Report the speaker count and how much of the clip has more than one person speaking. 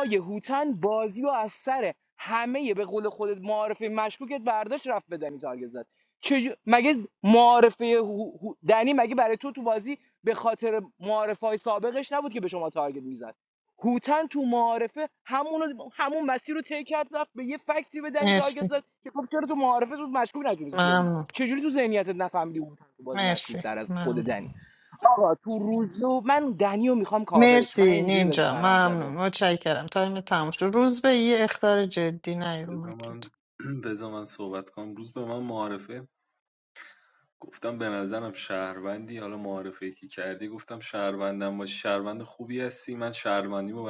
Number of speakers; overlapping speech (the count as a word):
three, about 10%